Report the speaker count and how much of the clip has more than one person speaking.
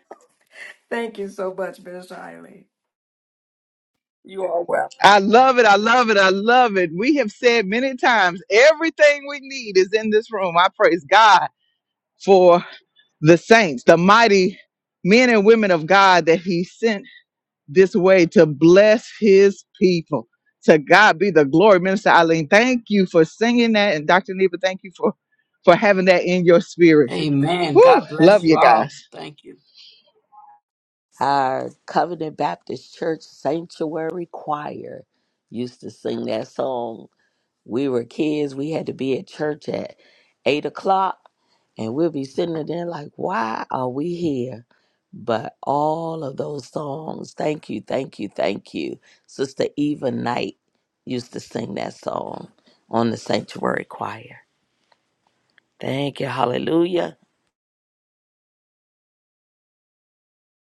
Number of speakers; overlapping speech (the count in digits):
4, about 2%